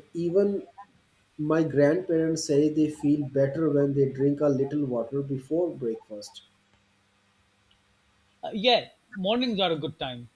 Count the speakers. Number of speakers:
2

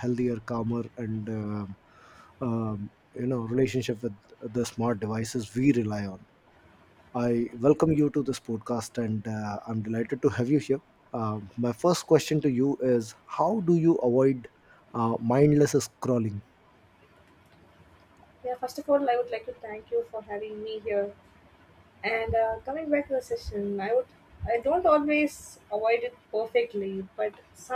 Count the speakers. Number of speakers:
2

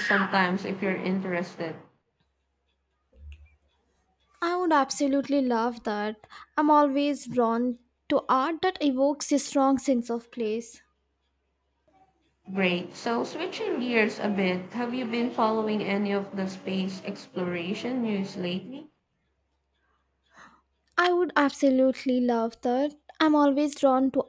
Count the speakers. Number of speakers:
2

